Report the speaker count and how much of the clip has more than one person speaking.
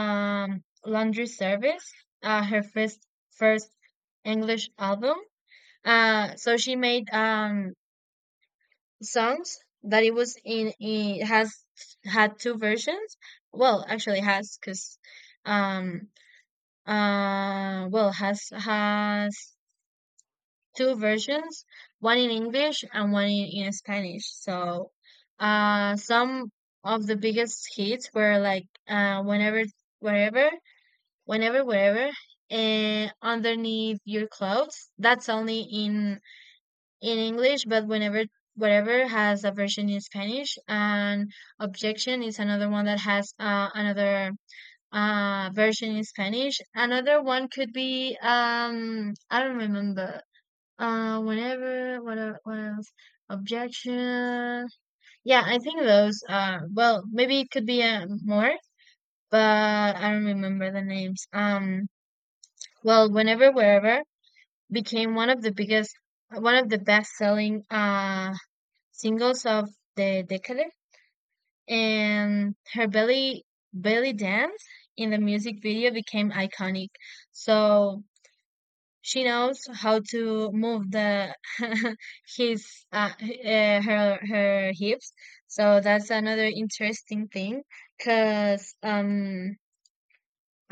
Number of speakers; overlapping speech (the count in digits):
1, no overlap